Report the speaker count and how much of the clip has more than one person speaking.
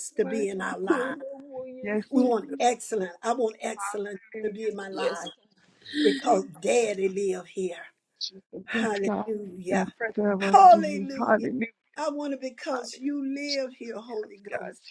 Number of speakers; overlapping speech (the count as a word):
three, about 28%